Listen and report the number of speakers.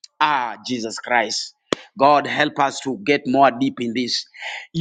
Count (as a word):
one